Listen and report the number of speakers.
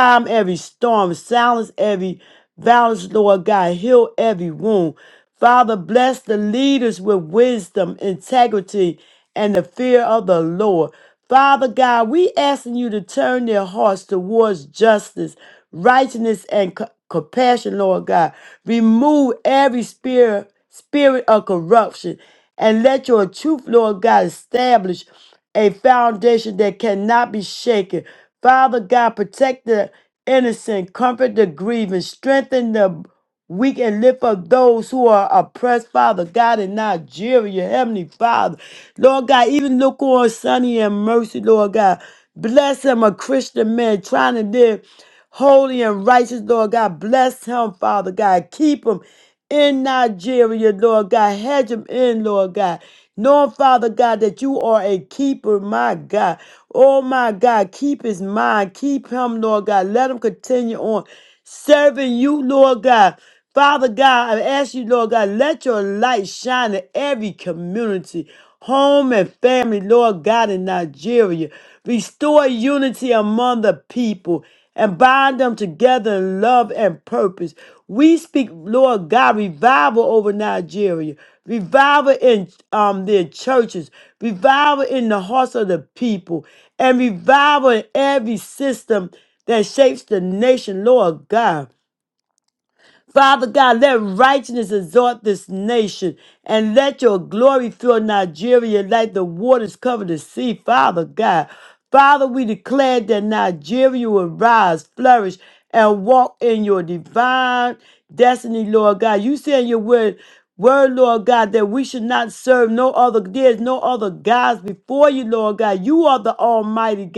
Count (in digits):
1